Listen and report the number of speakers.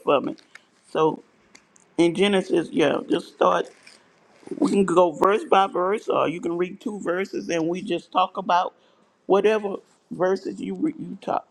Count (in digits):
1